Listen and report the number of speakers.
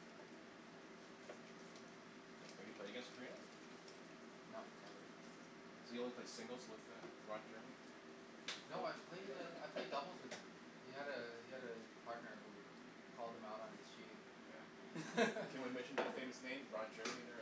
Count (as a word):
two